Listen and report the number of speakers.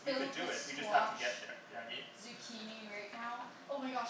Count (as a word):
two